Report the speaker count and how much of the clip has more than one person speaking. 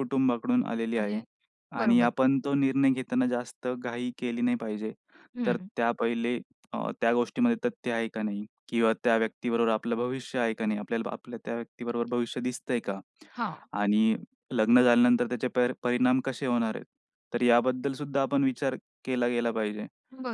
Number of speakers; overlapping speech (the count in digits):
2, about 4%